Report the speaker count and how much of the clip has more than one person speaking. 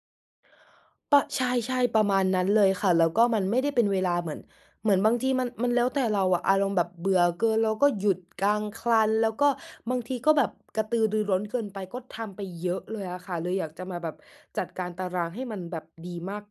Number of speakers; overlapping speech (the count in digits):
1, no overlap